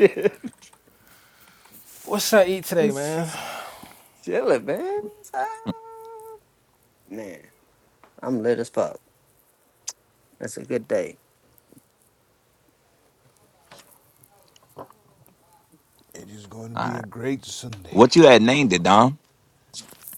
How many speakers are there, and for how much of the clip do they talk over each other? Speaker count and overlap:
four, about 2%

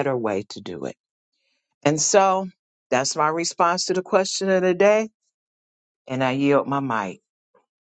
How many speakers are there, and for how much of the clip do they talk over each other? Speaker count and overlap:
one, no overlap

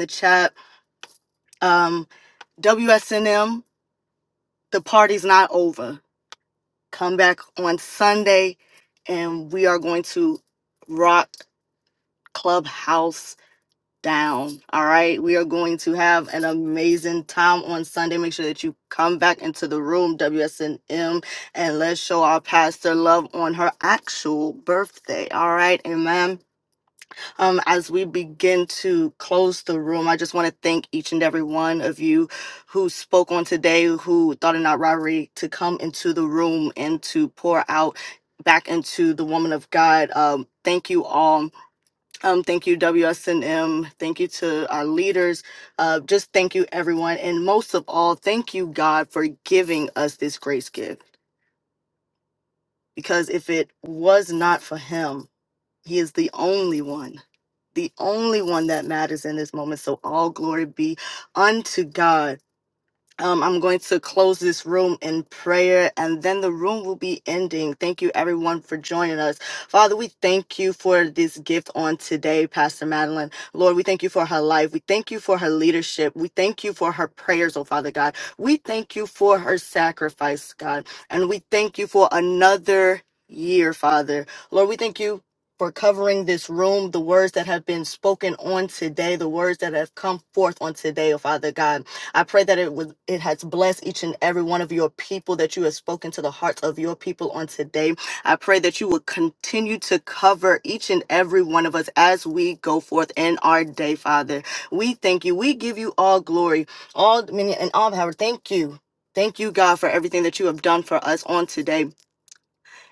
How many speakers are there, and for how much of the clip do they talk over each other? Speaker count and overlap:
one, no overlap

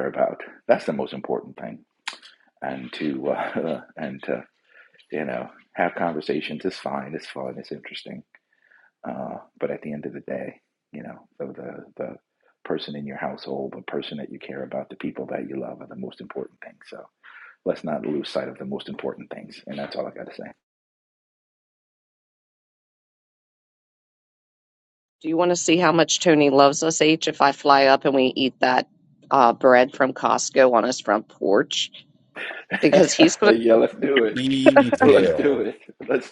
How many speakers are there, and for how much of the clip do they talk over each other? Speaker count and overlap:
three, about 3%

